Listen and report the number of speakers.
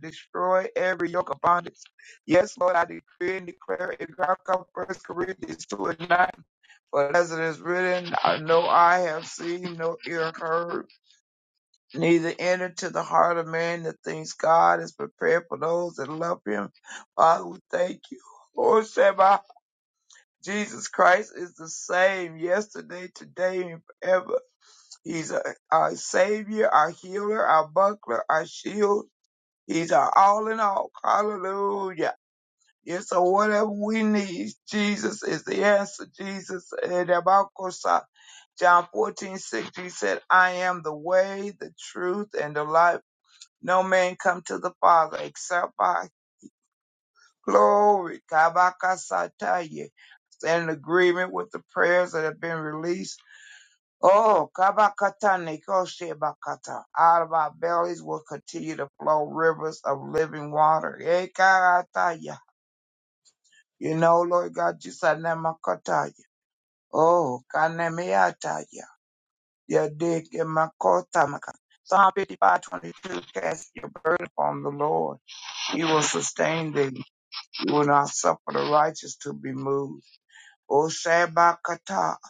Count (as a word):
one